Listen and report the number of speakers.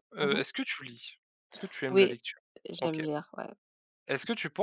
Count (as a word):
two